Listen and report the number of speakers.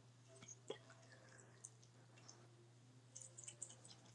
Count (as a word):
zero